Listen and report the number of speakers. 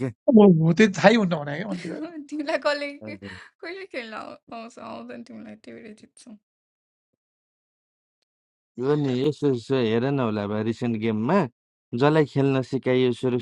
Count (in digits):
3